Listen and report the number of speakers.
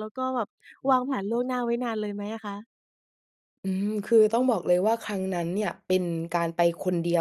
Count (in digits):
2